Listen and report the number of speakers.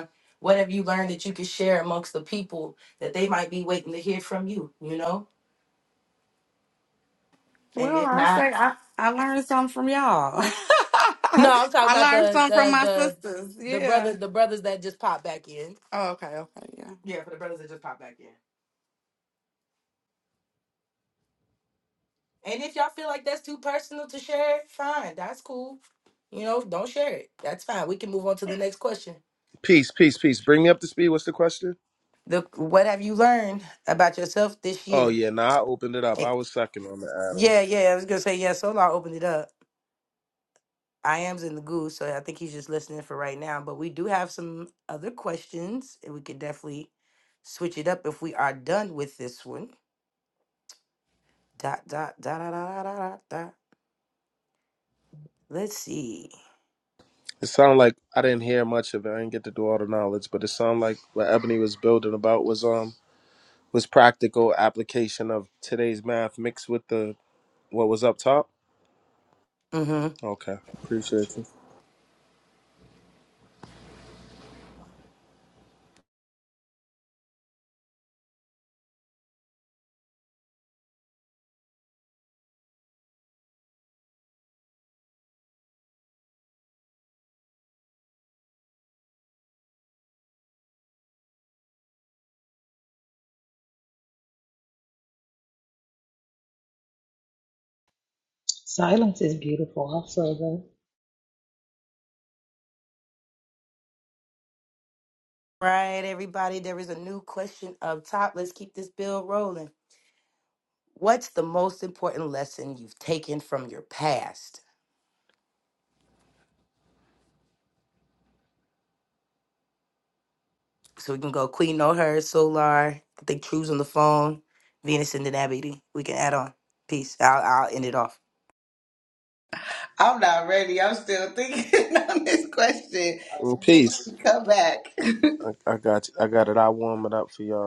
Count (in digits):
5